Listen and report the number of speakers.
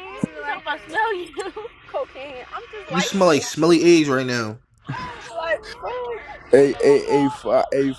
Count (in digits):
3